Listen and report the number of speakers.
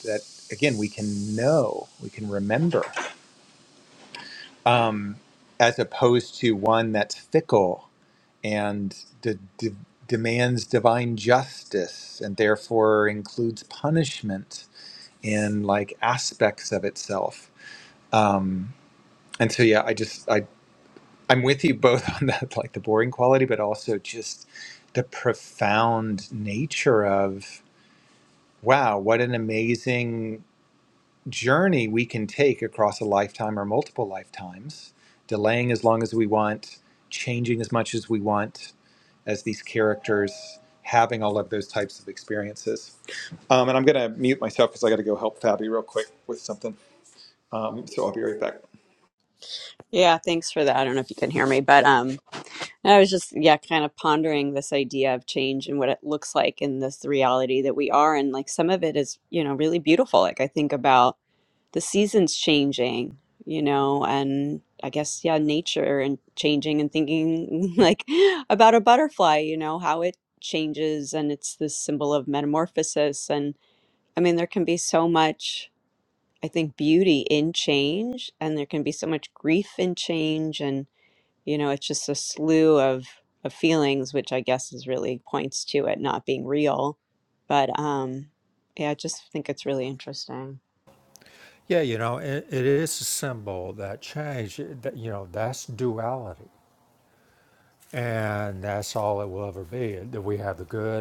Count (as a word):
three